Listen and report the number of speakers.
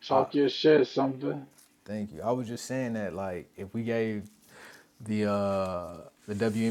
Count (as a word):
two